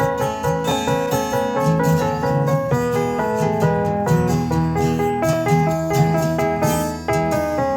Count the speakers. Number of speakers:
0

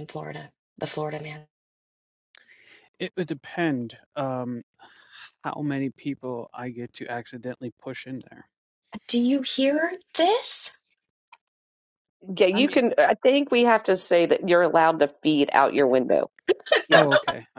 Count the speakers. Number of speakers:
3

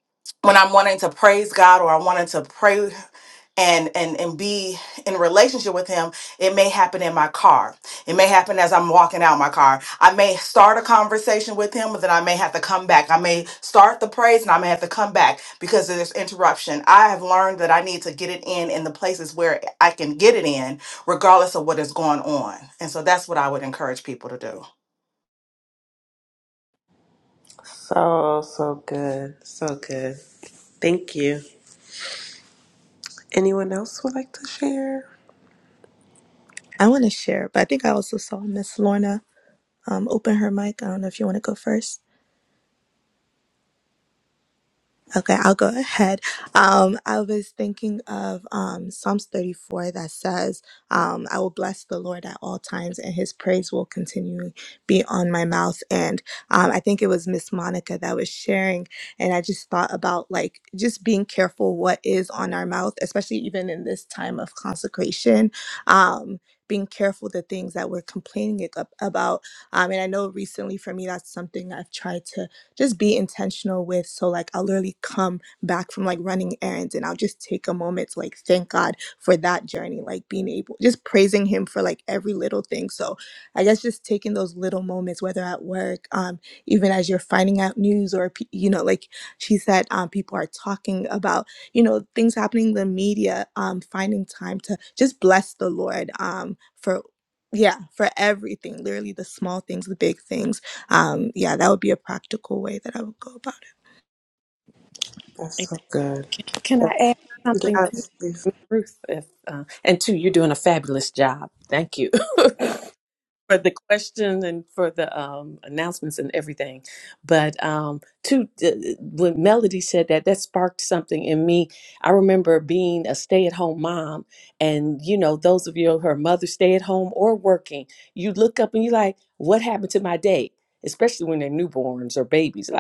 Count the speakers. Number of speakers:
4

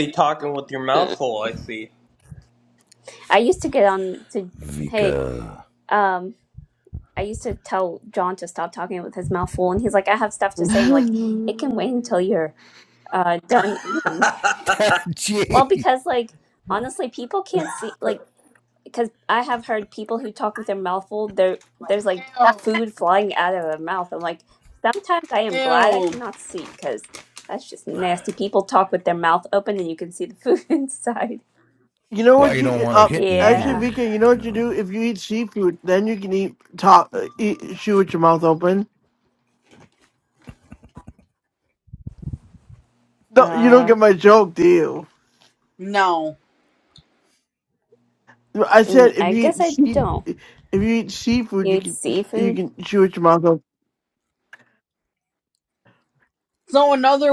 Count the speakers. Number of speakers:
5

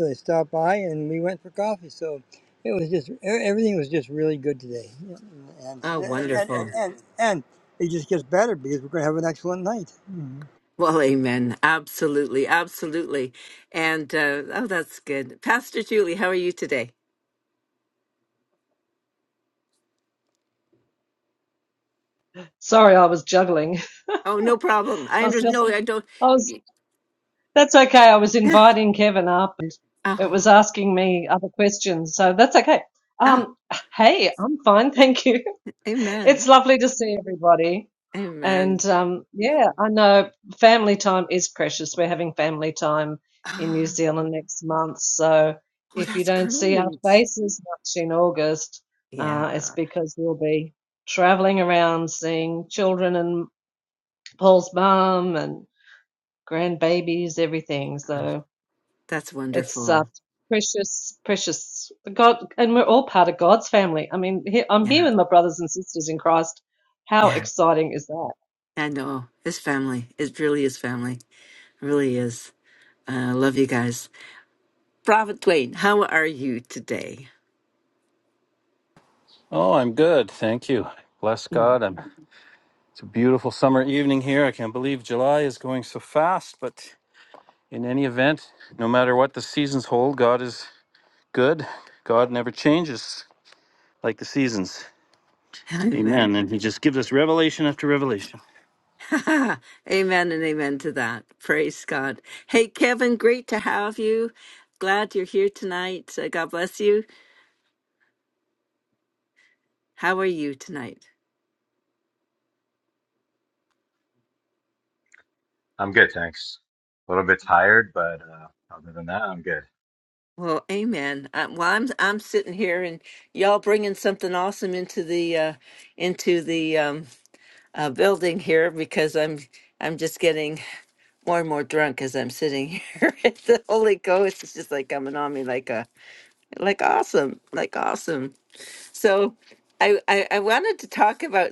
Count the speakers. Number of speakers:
5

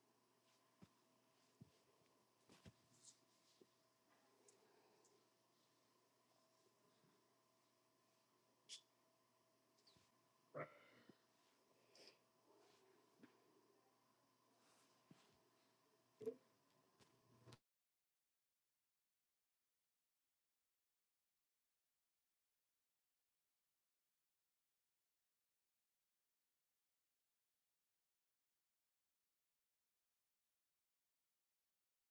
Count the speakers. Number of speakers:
0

